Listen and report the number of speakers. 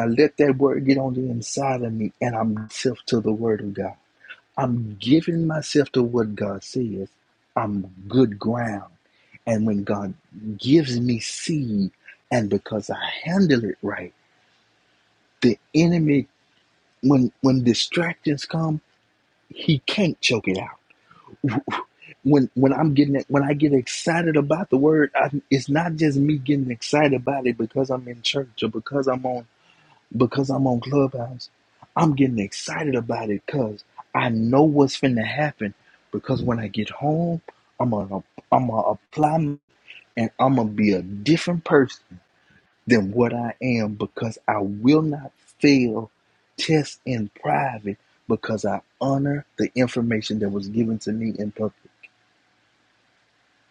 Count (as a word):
one